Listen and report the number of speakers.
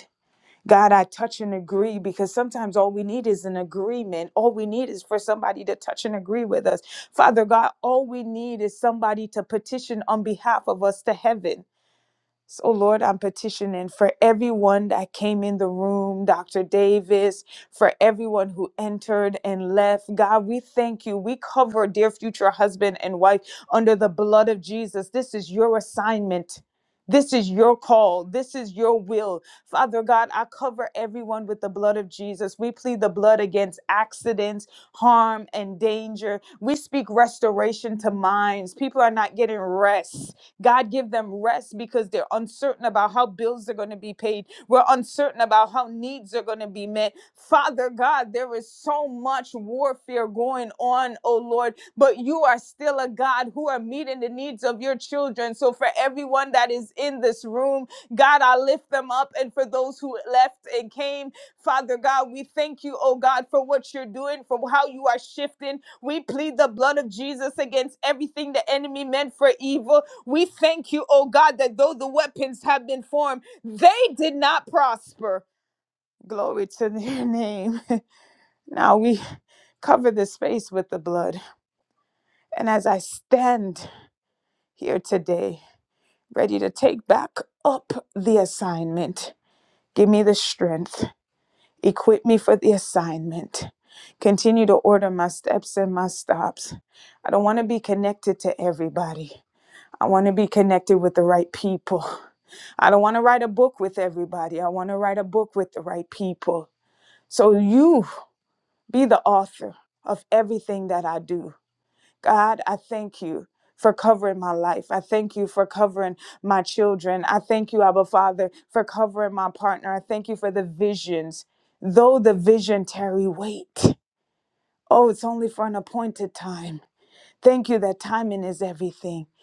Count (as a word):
one